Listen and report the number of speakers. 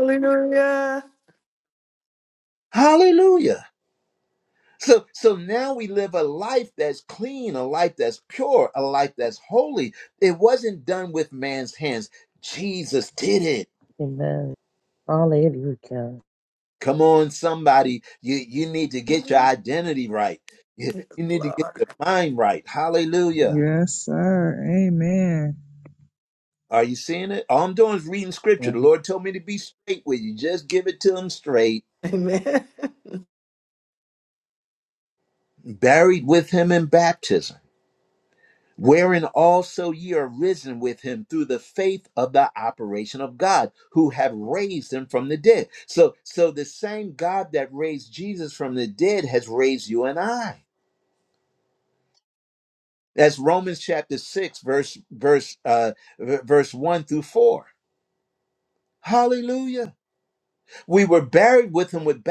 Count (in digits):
4